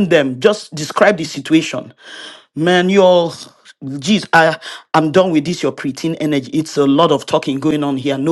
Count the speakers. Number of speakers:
1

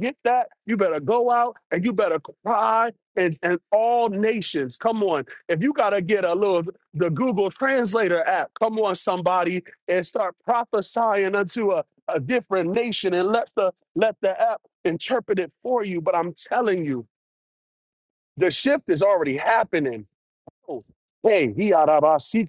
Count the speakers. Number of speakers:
1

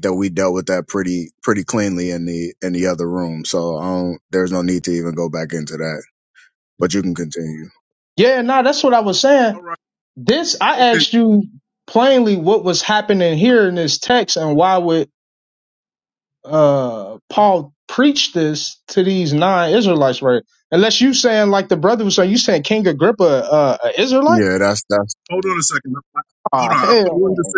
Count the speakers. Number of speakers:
3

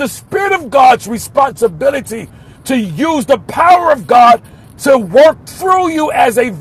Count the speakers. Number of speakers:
1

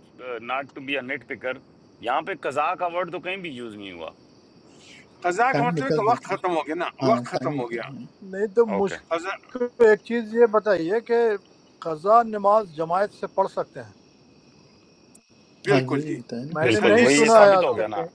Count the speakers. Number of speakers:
4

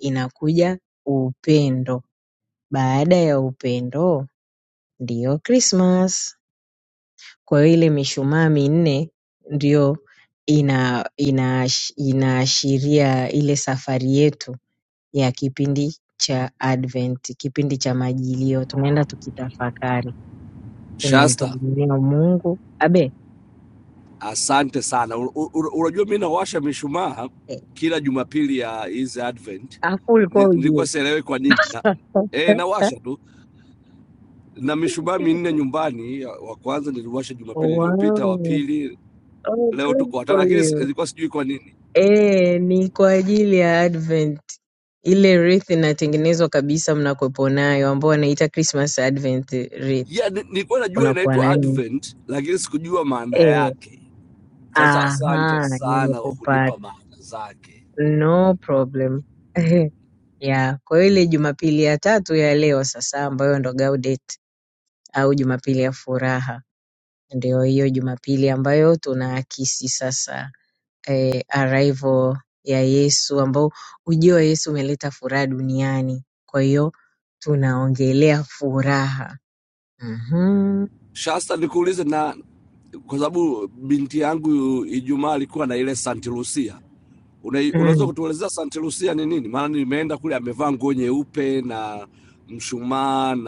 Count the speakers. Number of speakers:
2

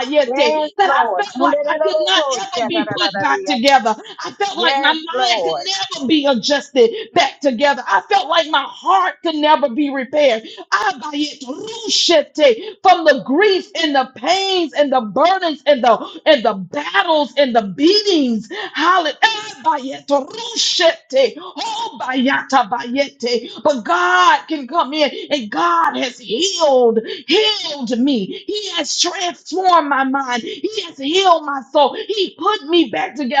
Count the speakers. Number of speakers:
2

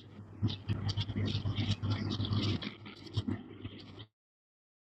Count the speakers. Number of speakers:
0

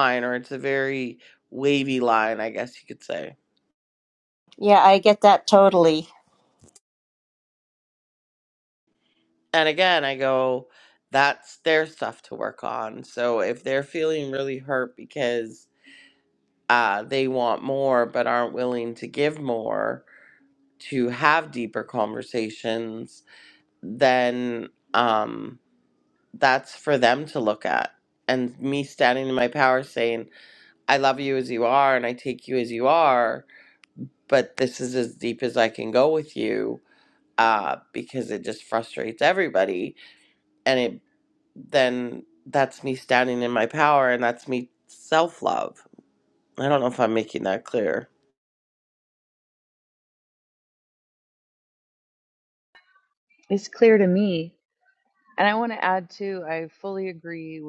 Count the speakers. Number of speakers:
3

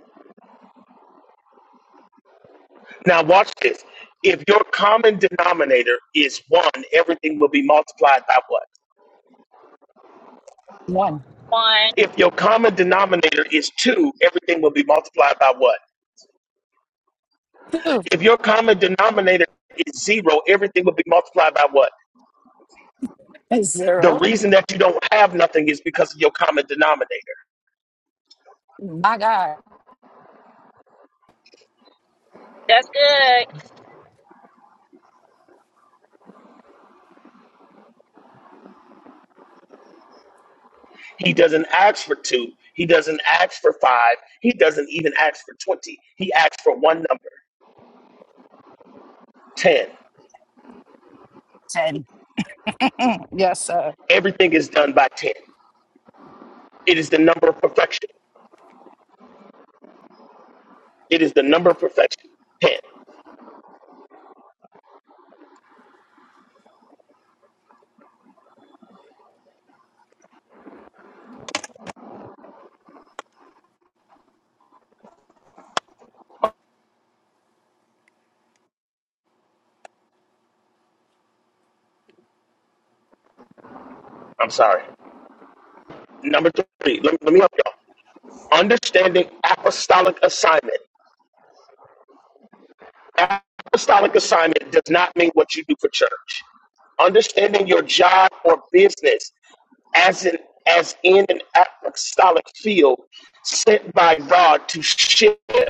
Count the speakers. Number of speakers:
3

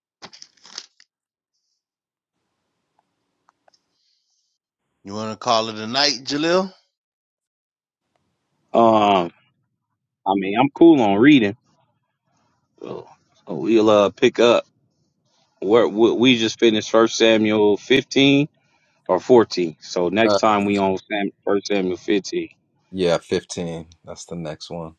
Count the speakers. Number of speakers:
3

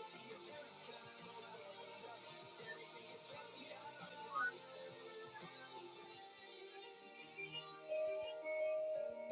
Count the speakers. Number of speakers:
0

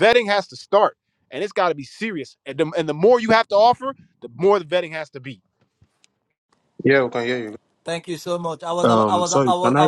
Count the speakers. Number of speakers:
3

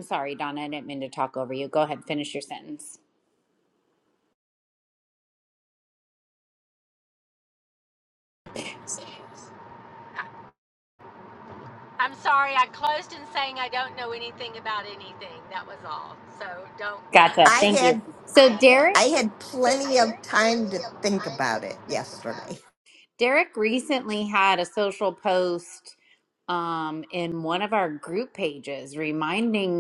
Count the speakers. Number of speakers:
3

